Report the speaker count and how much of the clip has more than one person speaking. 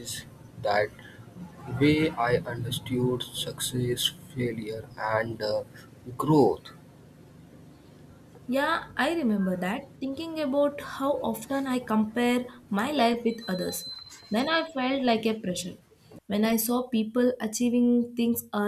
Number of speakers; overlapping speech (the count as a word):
two, no overlap